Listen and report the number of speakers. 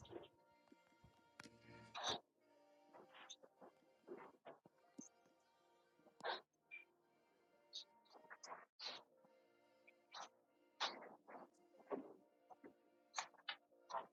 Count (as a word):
zero